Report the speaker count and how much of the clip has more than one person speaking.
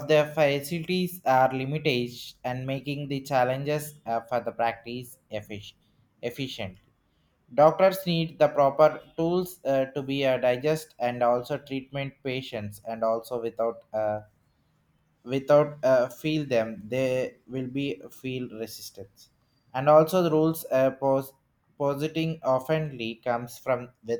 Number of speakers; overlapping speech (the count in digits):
1, no overlap